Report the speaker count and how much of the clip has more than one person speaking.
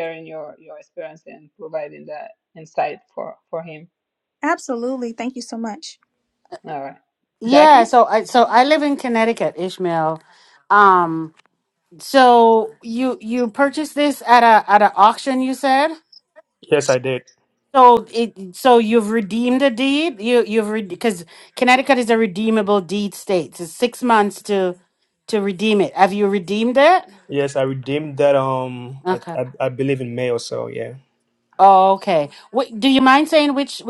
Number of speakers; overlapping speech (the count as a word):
four, about 2%